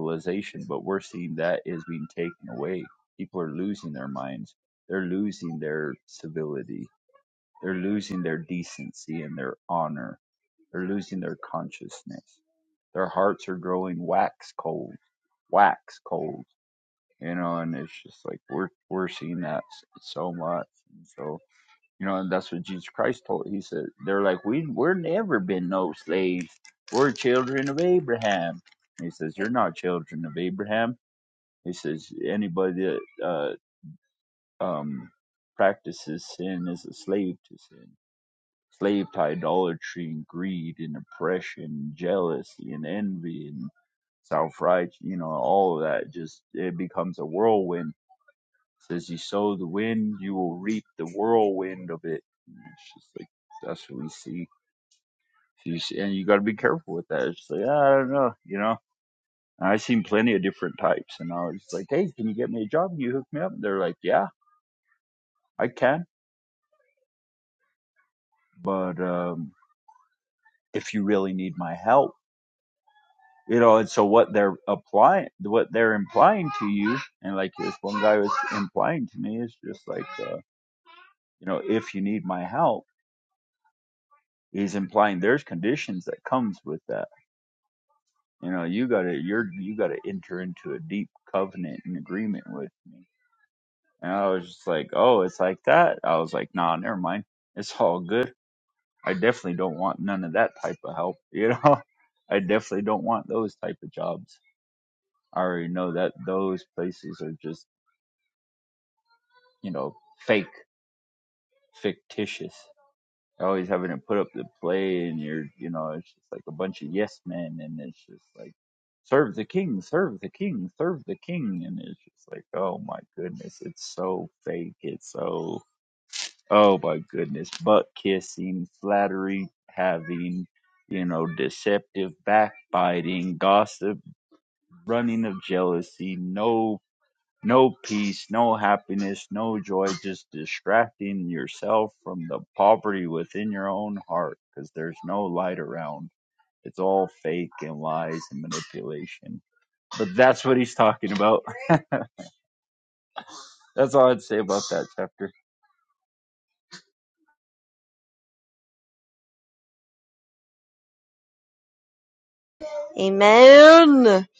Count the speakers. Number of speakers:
2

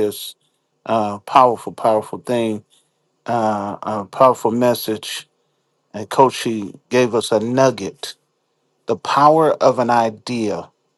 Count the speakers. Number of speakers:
1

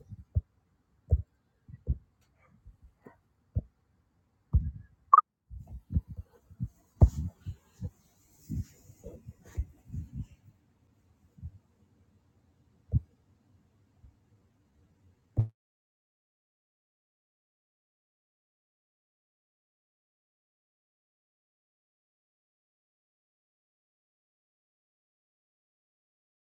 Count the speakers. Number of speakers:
0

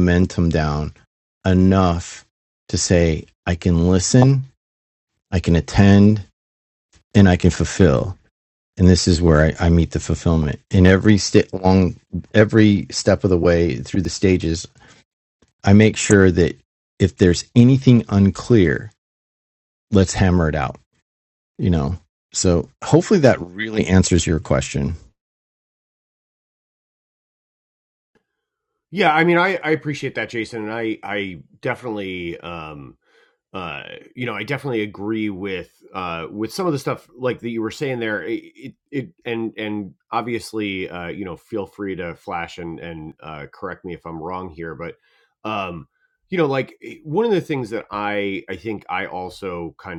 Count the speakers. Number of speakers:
2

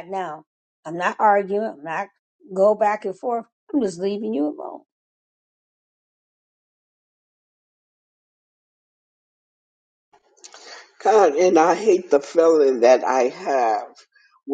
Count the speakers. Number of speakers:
2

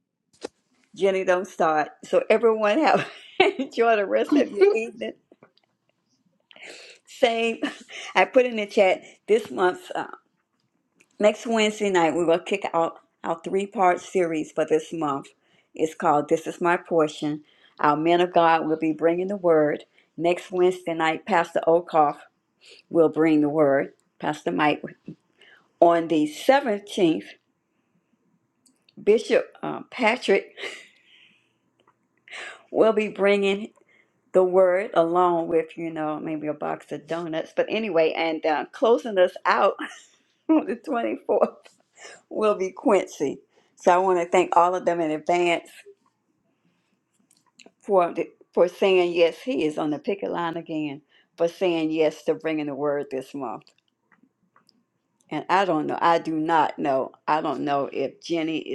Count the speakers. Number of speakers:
1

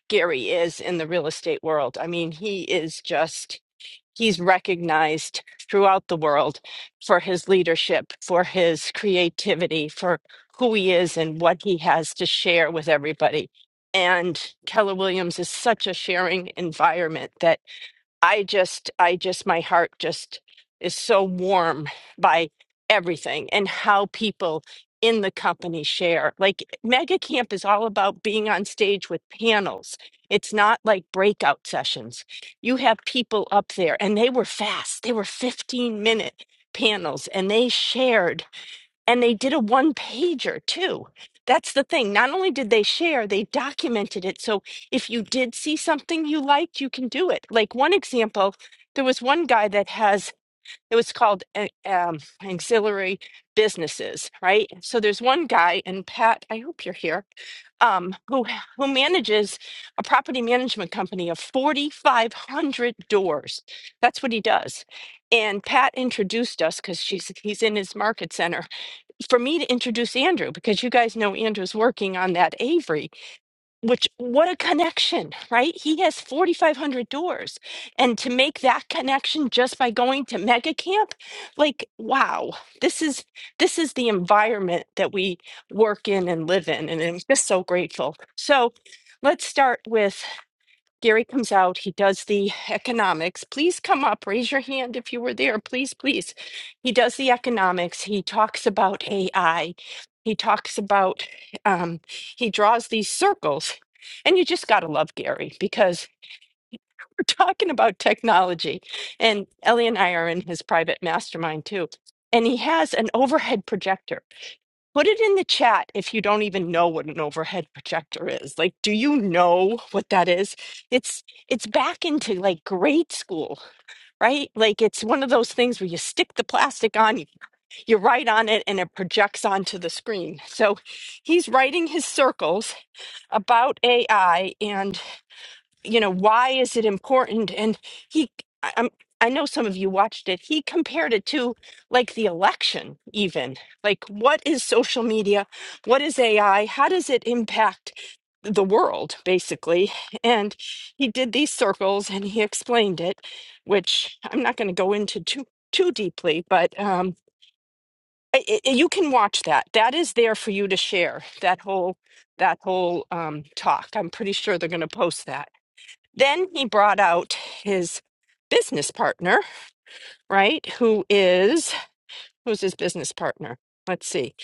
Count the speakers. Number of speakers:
1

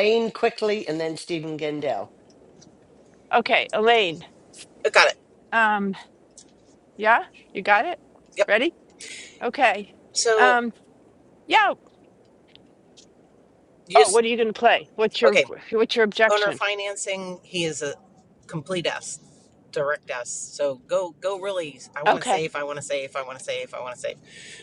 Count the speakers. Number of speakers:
3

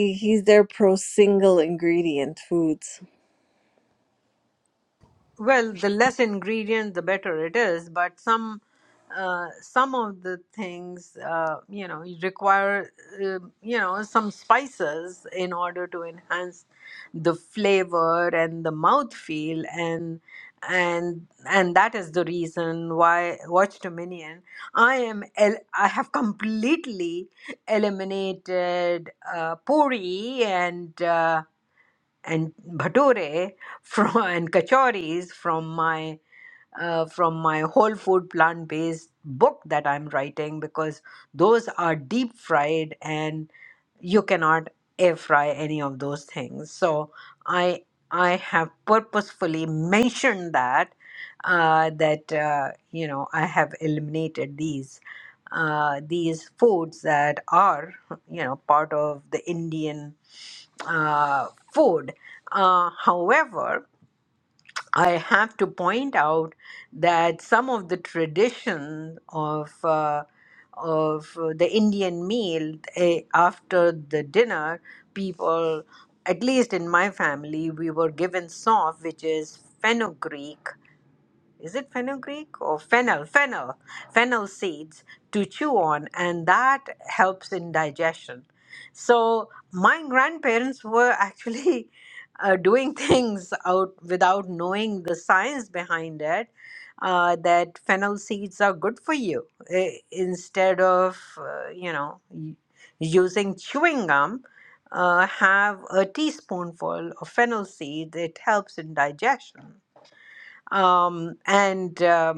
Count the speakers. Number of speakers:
2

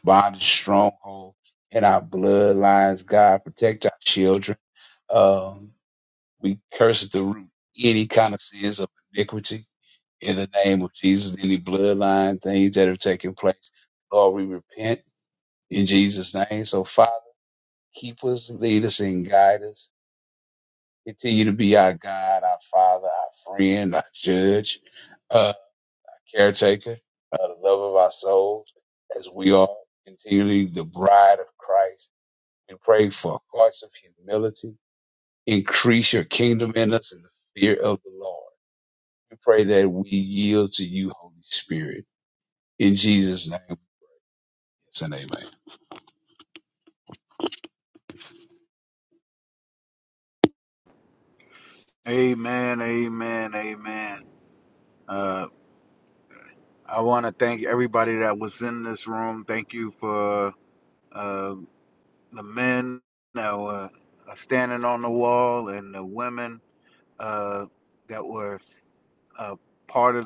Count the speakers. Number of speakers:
2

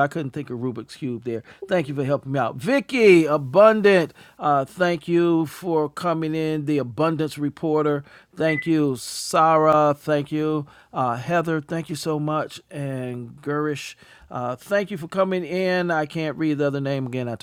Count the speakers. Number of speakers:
1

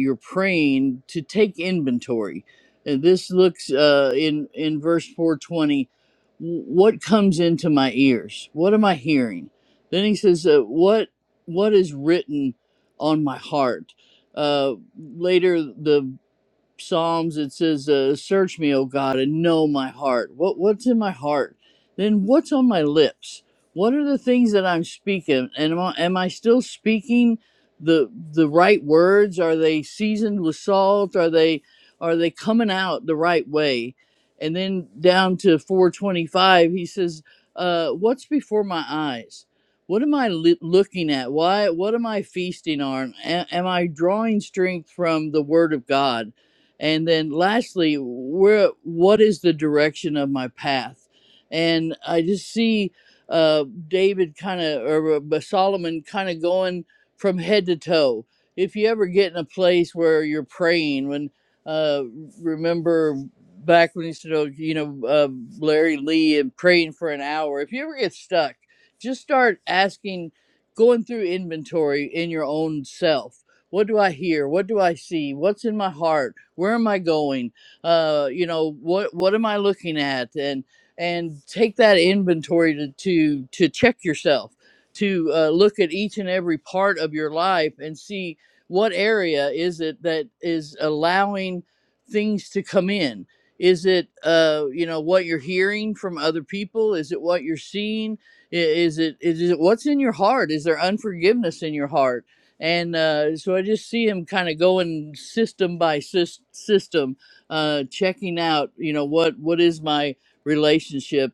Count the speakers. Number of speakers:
1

